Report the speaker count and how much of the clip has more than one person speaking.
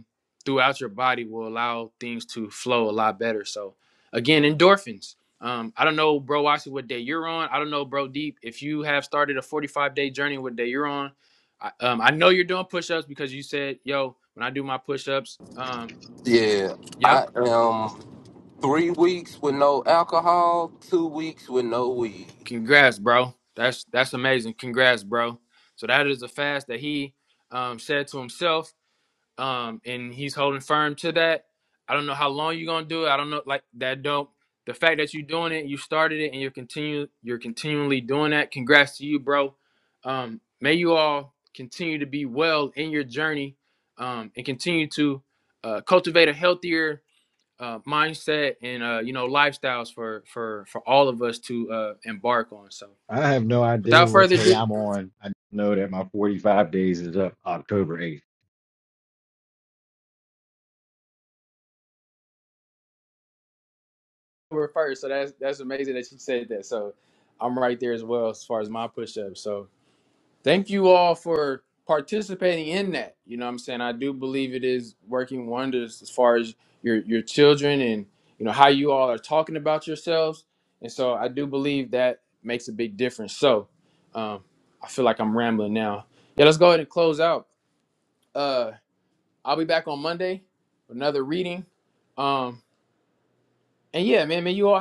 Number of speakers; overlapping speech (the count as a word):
three, about 1%